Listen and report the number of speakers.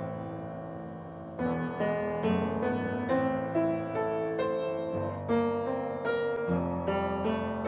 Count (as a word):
zero